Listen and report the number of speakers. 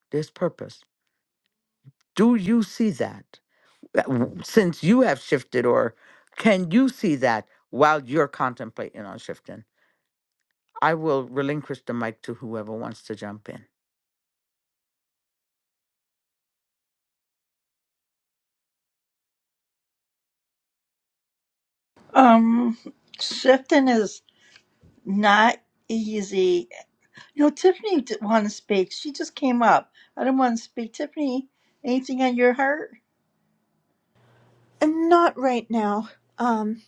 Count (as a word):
three